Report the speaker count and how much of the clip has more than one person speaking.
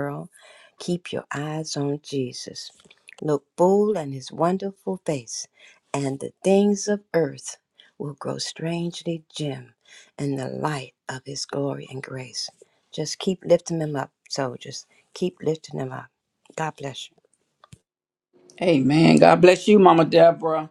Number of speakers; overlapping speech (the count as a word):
two, no overlap